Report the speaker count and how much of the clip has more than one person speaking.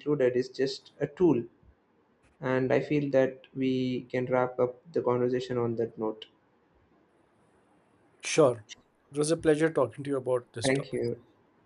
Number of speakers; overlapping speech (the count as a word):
two, about 3%